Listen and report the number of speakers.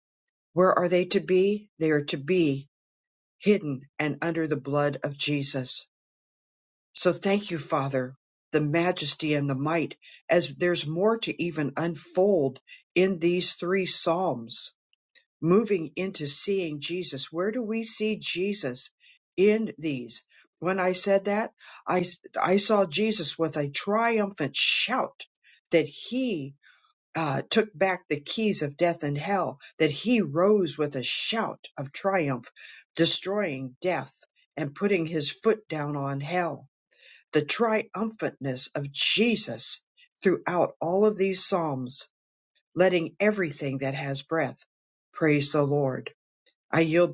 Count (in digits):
1